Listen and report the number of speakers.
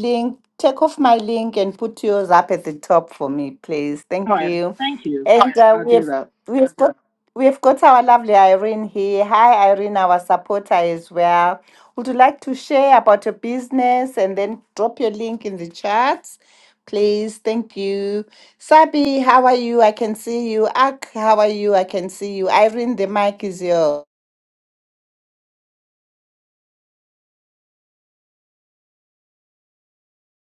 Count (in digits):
2